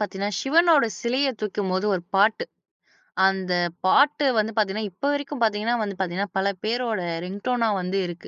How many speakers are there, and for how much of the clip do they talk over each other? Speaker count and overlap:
one, no overlap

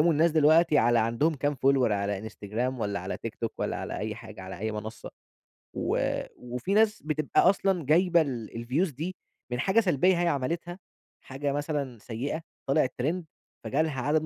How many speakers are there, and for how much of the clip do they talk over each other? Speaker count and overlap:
one, no overlap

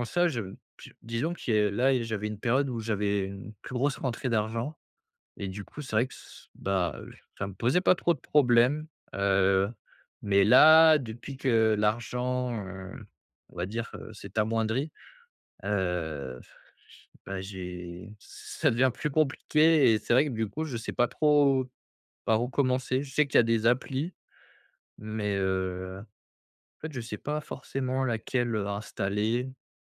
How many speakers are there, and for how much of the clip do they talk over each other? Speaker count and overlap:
one, no overlap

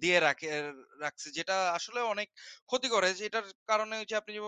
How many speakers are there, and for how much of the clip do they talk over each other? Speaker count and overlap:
one, no overlap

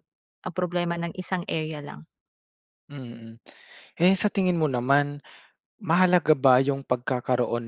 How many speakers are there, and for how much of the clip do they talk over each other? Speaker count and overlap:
two, no overlap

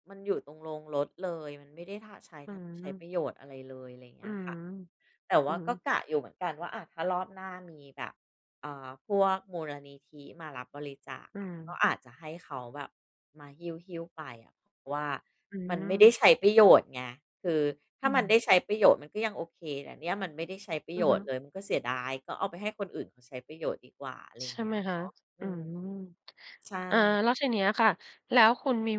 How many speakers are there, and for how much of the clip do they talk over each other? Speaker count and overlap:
two, about 10%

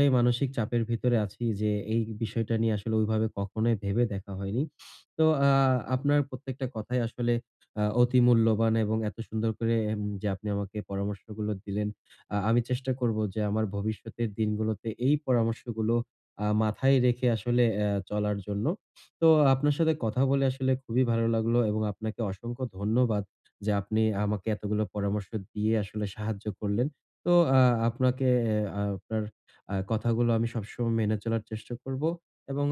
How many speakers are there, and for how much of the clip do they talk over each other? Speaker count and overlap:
one, no overlap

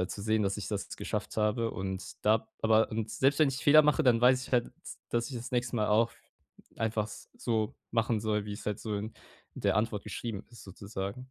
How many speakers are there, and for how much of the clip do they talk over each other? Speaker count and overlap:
one, no overlap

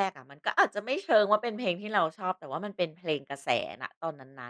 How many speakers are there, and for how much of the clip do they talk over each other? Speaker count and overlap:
one, no overlap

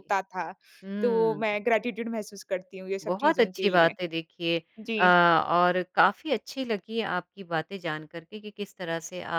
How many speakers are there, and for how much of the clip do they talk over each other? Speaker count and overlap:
two, about 15%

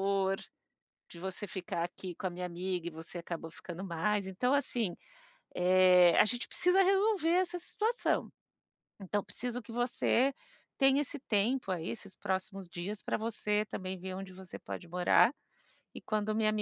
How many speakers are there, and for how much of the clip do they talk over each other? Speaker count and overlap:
one, no overlap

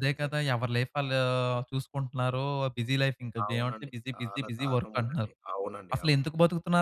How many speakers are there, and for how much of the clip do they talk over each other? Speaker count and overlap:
two, about 33%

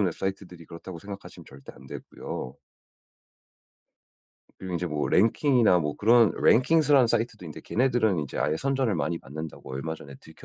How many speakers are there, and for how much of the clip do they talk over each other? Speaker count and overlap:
one, no overlap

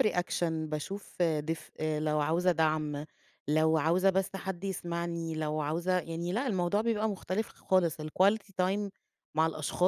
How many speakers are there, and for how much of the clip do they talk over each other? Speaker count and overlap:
one, no overlap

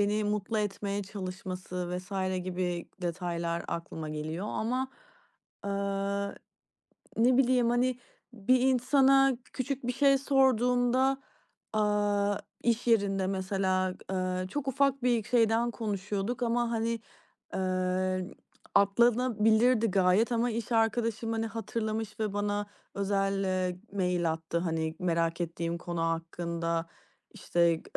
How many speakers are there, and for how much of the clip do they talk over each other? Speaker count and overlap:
one, no overlap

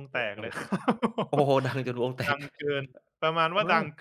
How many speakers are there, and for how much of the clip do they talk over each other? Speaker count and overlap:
two, about 21%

